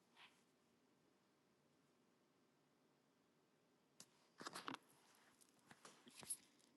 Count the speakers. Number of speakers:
zero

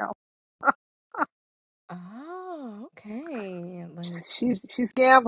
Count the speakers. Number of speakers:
two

